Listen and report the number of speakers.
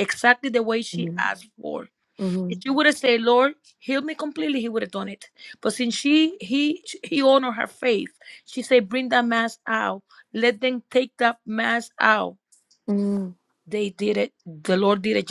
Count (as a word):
two